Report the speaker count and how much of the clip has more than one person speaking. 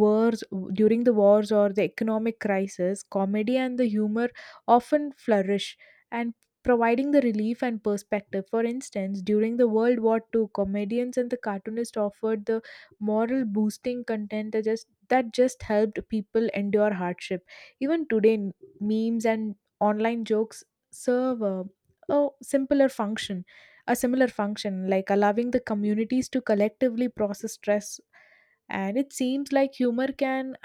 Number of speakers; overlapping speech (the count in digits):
1, no overlap